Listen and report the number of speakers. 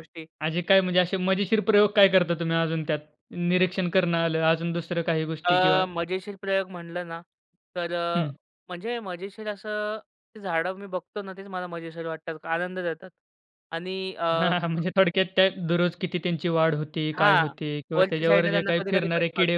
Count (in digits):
2